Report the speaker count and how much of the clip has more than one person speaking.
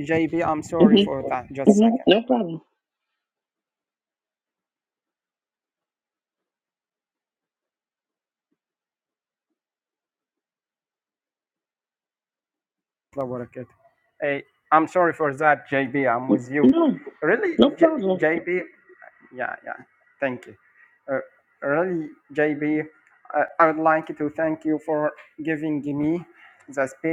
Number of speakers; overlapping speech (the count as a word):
two, about 5%